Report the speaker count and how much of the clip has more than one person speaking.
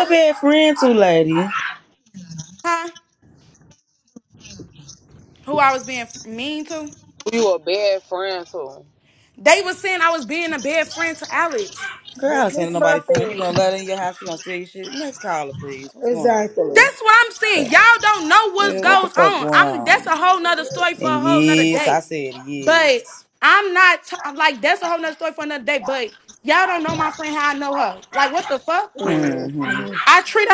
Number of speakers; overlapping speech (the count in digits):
4, about 18%